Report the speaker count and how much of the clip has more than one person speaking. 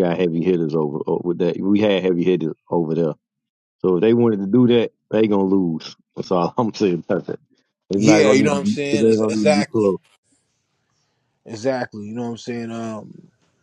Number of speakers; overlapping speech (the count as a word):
two, about 14%